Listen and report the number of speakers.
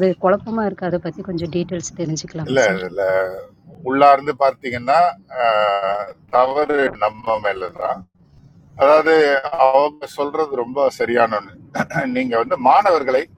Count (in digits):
2